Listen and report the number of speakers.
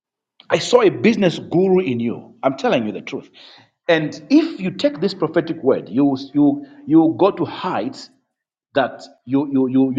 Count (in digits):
1